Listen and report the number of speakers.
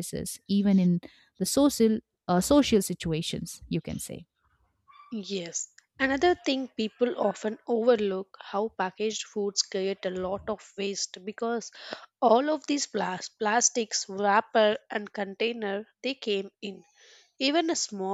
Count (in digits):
2